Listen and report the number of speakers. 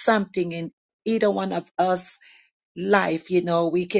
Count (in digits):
1